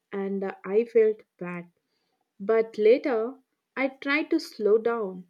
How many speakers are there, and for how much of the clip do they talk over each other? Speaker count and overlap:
1, no overlap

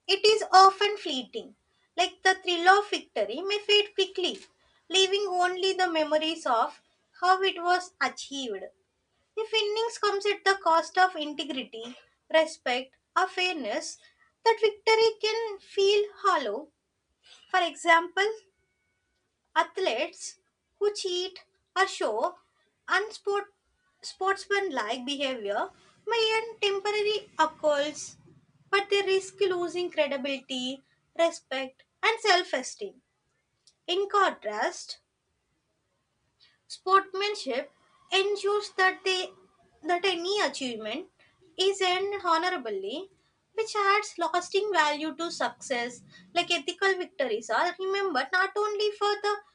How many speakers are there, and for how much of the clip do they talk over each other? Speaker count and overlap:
1, no overlap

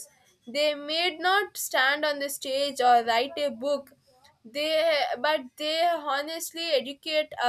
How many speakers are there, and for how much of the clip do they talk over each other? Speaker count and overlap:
1, no overlap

